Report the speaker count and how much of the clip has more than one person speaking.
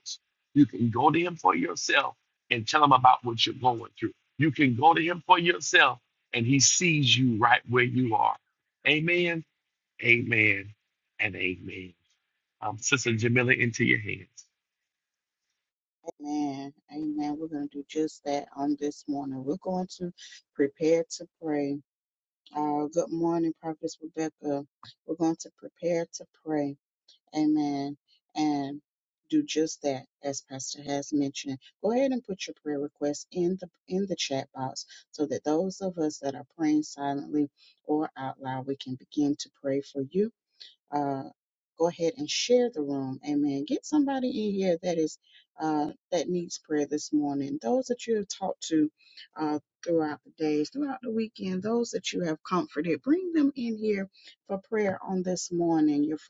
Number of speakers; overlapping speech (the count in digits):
2, no overlap